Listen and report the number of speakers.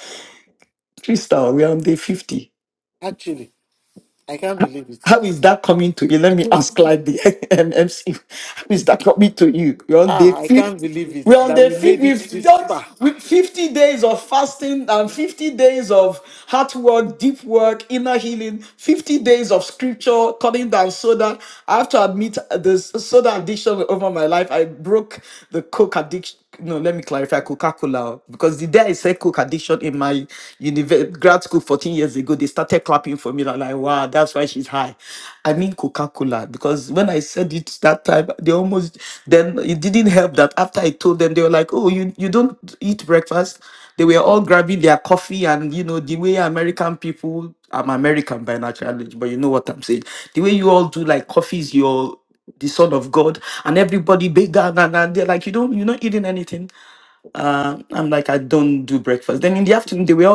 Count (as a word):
two